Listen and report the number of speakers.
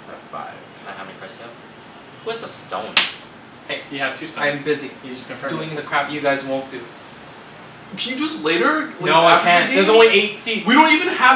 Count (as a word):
four